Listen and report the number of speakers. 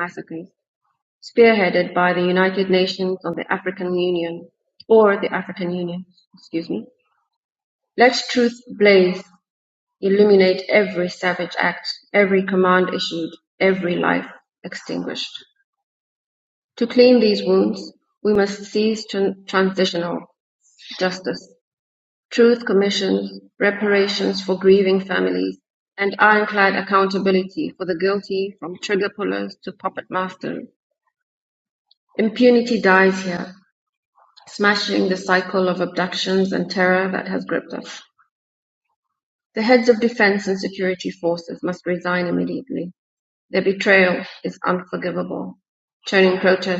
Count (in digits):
1